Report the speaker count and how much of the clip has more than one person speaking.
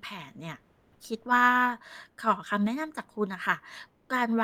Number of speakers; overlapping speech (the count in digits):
1, no overlap